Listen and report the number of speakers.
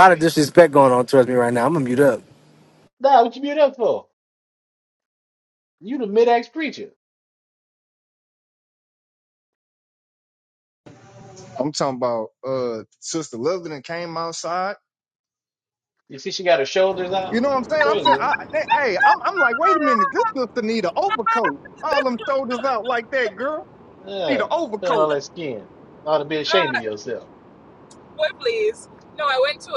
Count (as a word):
four